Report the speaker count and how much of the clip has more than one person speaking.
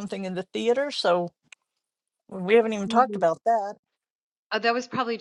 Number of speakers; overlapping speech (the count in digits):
2, about 8%